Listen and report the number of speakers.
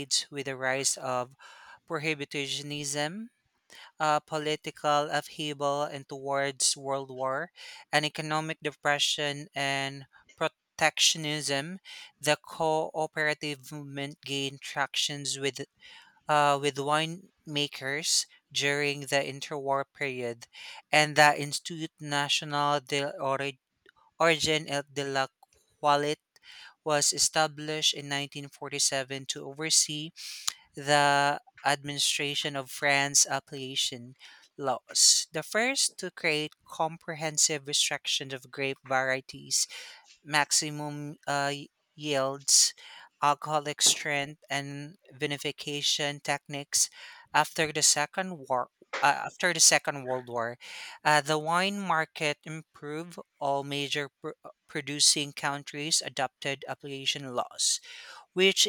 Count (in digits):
1